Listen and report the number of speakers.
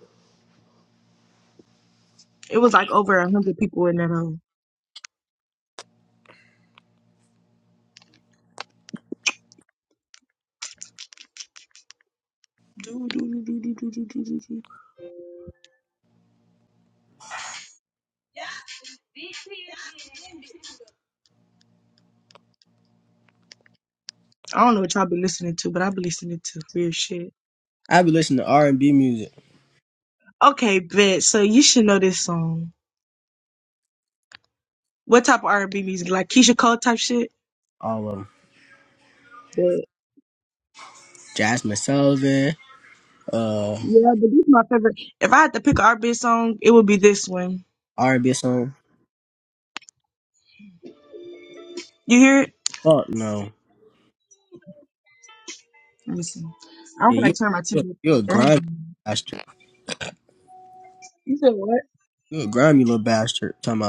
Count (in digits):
2